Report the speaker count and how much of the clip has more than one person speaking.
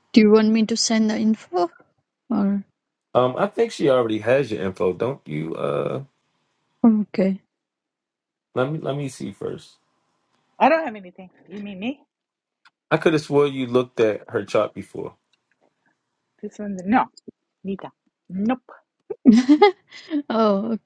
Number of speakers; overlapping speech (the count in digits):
3, no overlap